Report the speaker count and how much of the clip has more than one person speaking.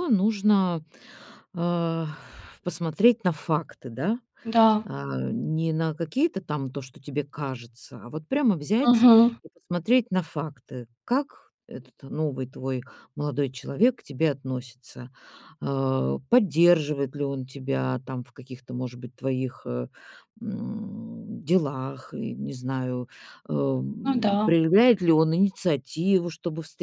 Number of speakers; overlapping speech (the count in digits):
2, about 3%